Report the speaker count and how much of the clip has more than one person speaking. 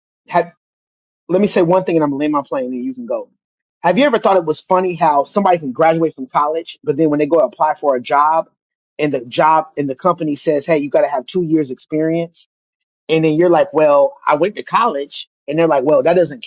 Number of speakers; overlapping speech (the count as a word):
one, no overlap